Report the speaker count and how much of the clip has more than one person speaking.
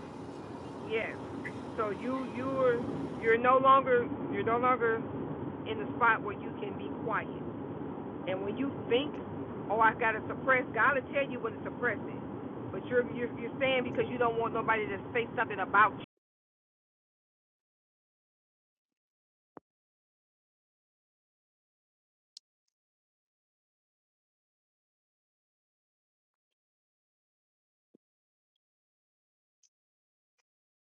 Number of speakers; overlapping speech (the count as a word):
one, no overlap